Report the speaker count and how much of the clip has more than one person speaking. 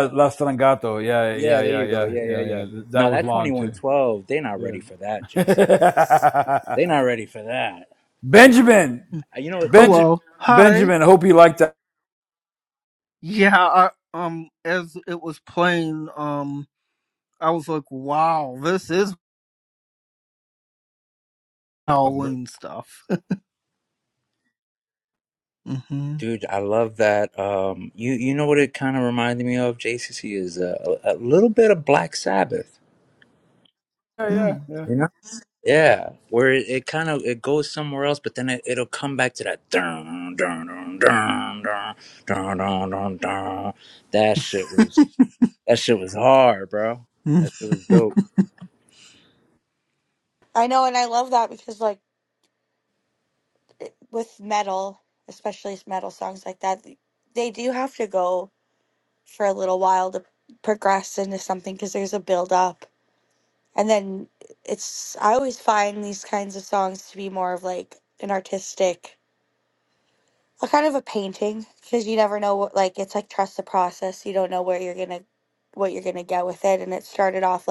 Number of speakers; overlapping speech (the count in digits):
4, about 4%